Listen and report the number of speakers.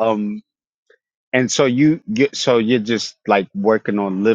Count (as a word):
one